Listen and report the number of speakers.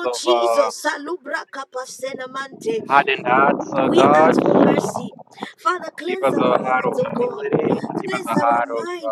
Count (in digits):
2